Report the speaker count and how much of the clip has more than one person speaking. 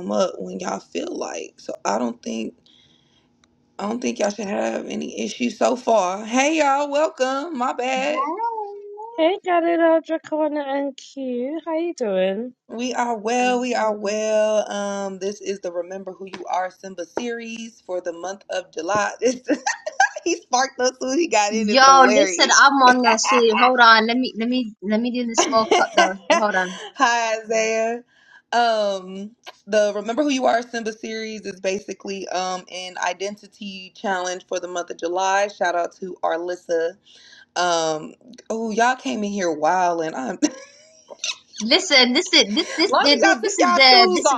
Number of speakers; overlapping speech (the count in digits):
3, about 8%